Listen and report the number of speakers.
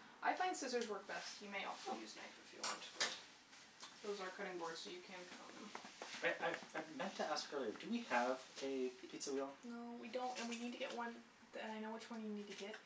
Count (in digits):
2